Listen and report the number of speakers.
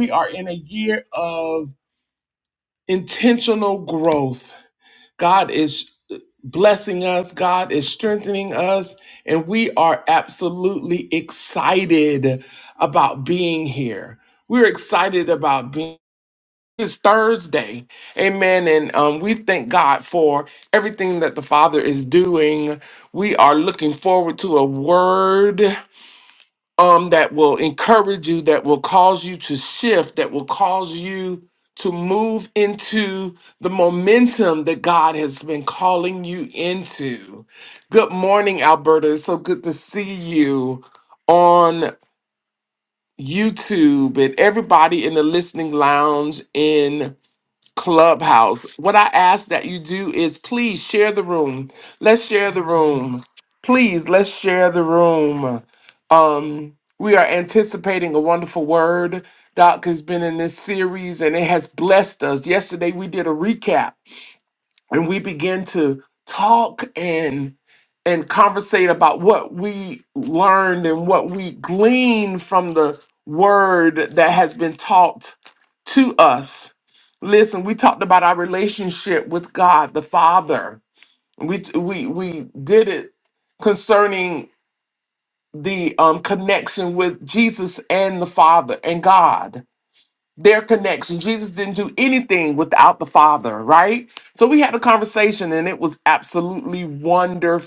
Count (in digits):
1